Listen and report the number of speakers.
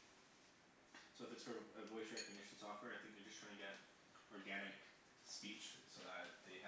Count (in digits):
1